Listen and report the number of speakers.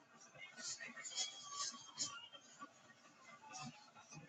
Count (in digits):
0